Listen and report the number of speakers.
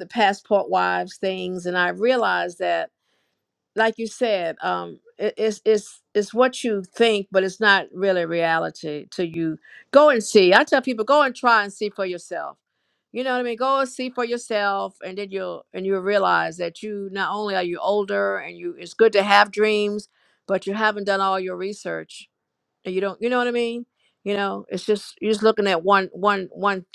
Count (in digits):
1